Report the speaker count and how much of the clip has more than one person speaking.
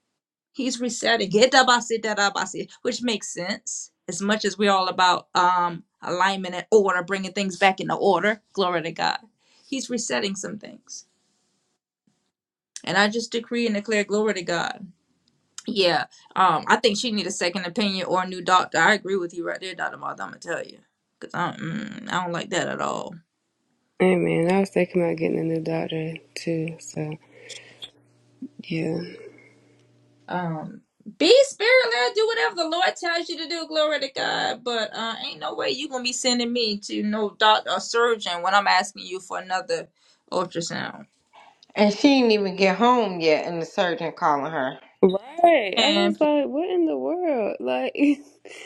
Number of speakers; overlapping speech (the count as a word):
three, about 1%